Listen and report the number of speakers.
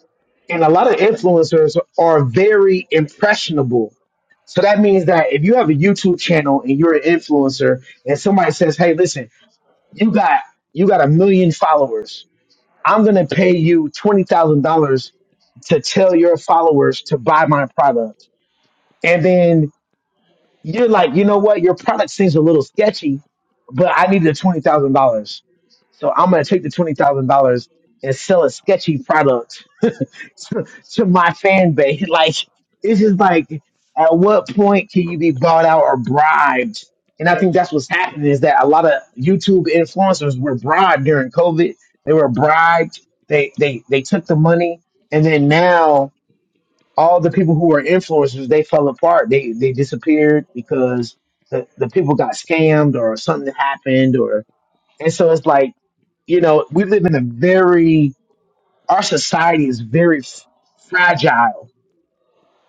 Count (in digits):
1